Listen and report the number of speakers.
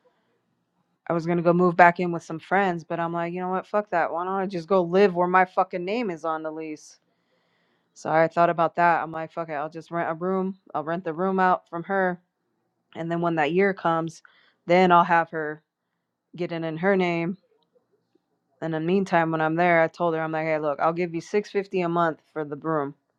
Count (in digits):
1